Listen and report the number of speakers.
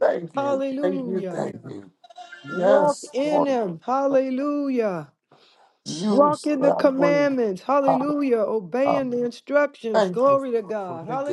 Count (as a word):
two